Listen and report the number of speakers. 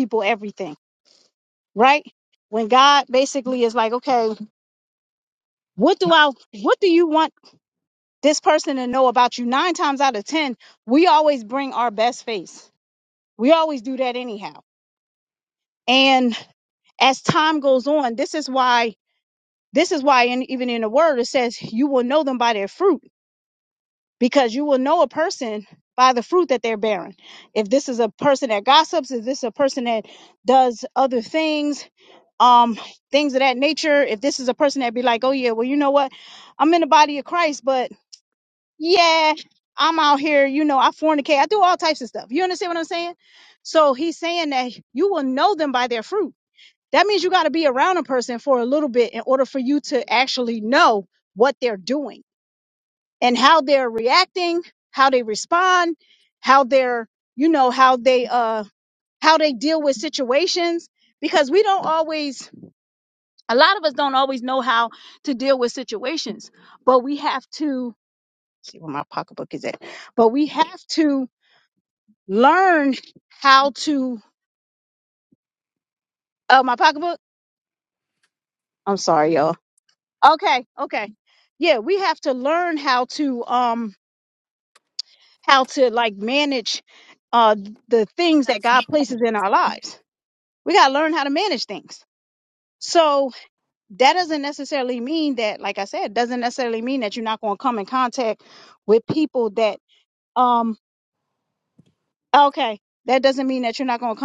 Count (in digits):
1